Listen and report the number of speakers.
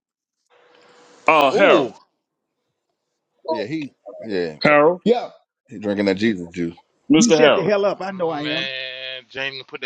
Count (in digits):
4